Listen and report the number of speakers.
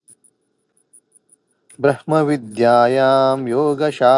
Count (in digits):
1